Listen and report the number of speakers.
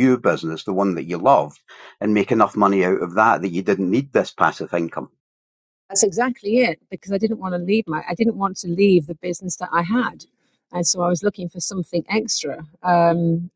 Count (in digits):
2